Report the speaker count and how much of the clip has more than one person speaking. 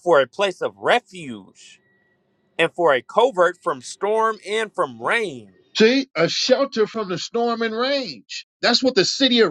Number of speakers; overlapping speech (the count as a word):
two, no overlap